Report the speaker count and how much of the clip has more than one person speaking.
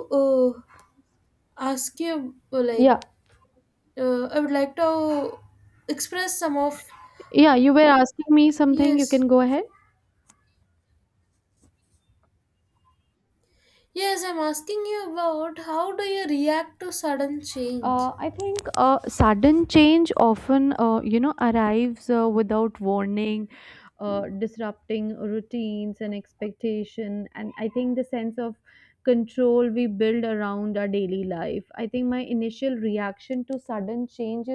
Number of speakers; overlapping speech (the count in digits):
2, about 2%